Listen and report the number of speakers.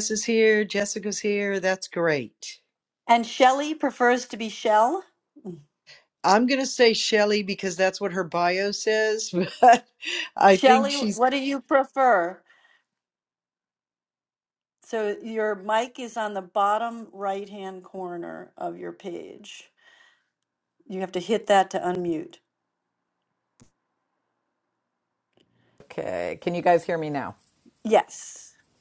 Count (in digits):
3